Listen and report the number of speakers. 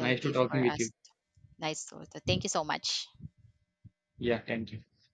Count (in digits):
2